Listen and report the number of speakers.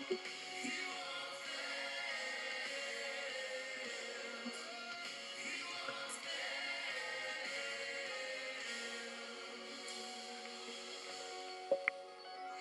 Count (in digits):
0